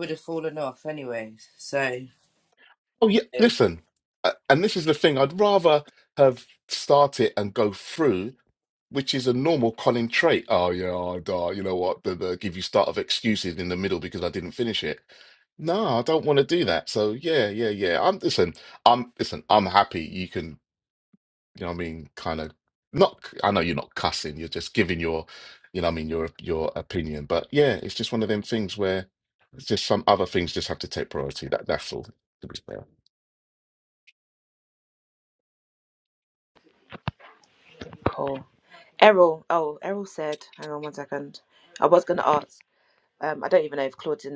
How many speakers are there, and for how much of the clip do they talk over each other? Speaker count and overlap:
three, under 1%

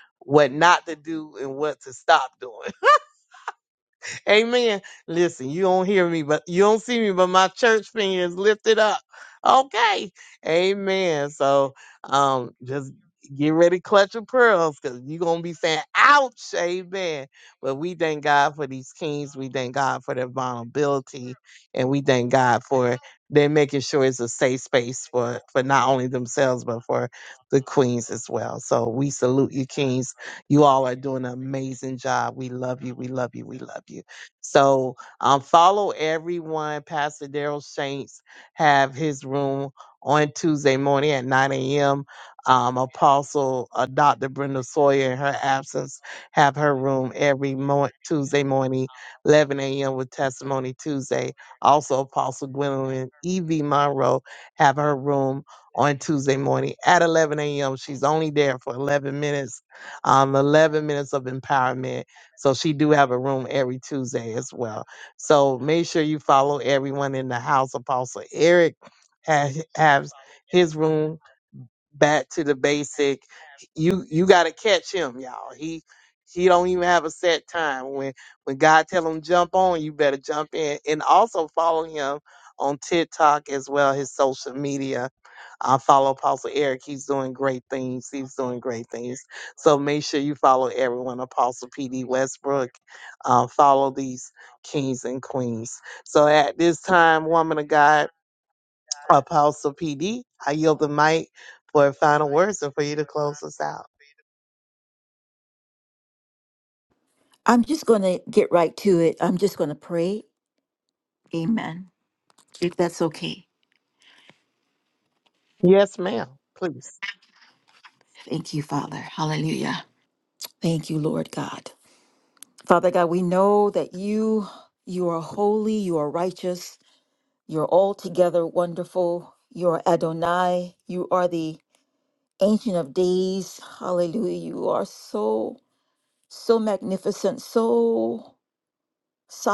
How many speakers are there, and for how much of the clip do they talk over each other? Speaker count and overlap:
two, no overlap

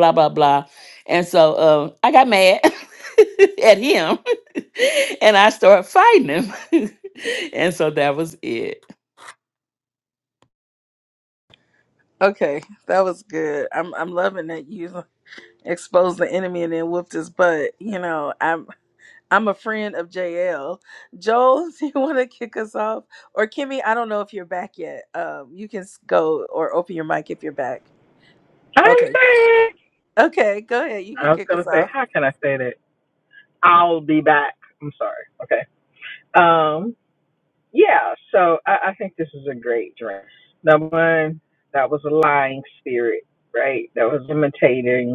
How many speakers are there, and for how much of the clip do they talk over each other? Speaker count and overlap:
three, about 2%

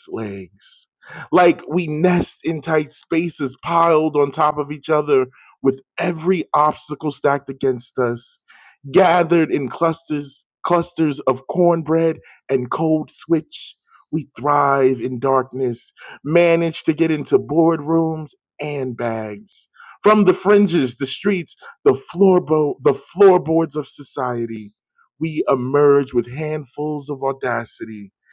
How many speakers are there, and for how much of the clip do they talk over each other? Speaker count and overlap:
one, no overlap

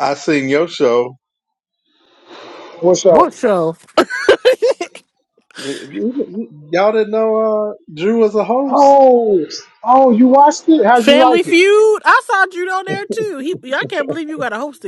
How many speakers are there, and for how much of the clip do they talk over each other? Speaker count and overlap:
three, about 6%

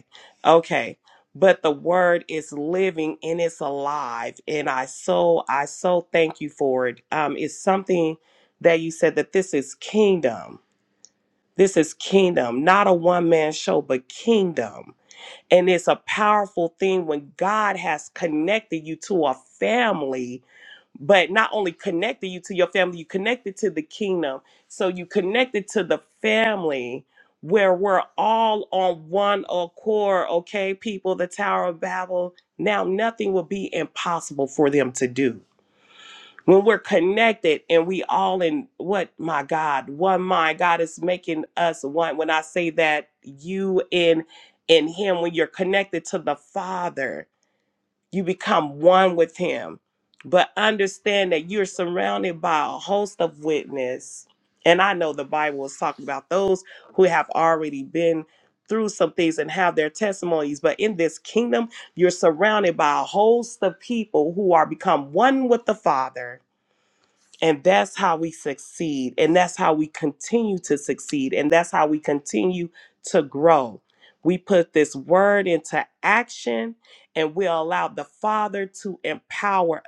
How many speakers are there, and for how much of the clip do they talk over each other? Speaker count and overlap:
one, no overlap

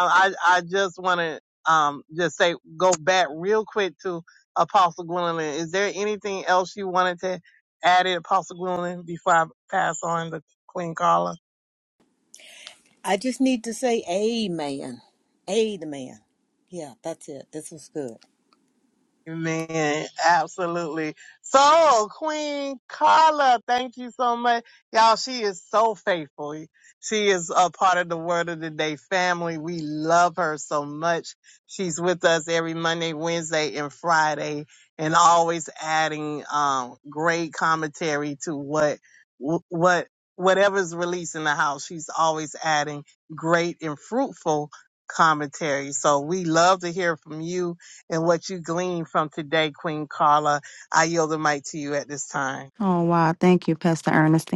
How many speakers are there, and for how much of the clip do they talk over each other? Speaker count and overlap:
three, no overlap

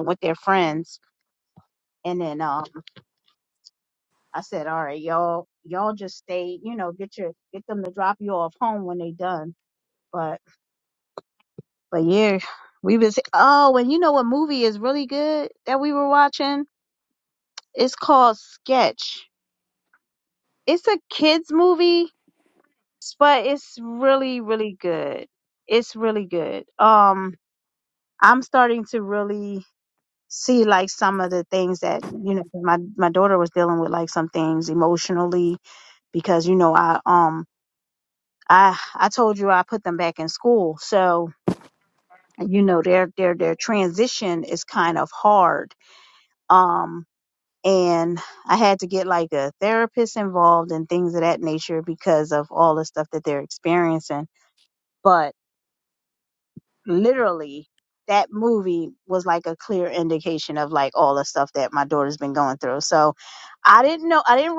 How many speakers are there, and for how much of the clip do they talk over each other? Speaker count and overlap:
one, no overlap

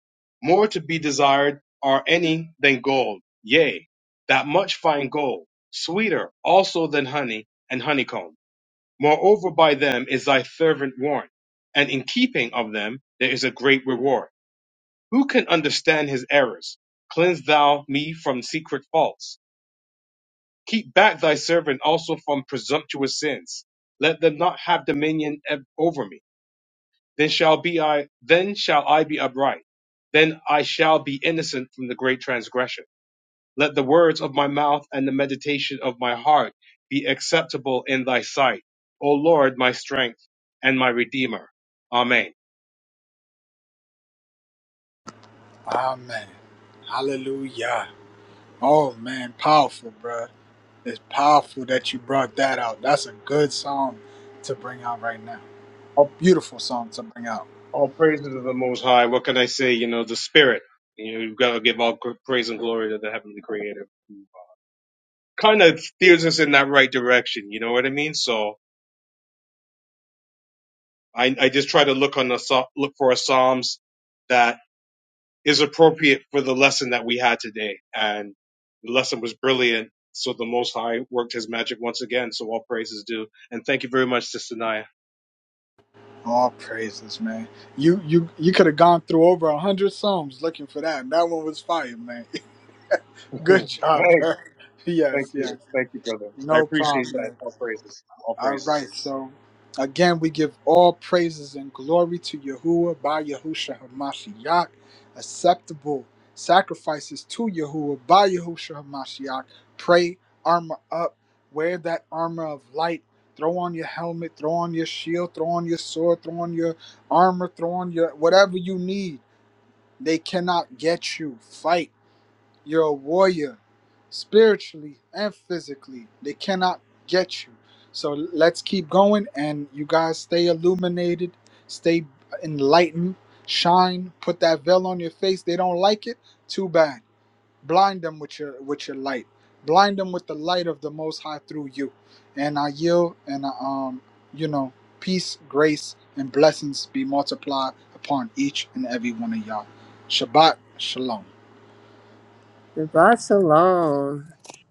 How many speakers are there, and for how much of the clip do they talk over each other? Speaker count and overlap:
three, about 1%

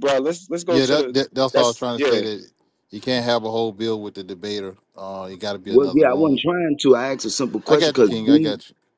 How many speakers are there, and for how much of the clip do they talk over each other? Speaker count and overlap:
three, about 26%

